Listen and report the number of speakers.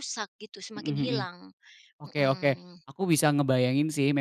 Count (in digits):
2